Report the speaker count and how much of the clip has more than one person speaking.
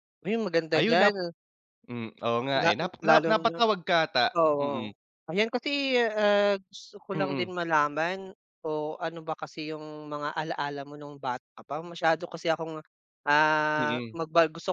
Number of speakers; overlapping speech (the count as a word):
two, about 18%